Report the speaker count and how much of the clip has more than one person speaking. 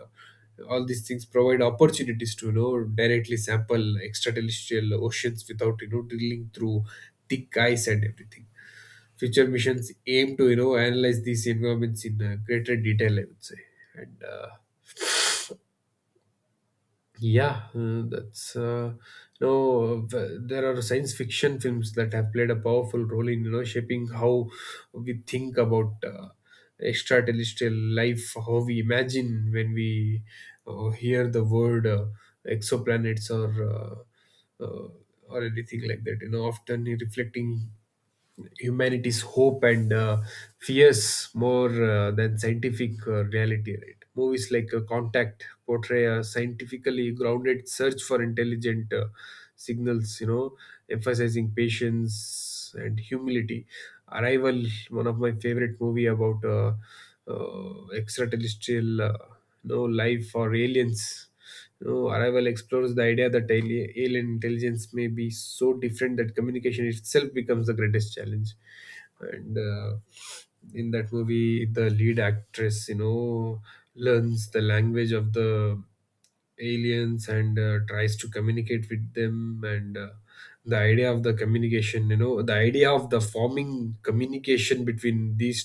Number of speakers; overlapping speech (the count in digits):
1, no overlap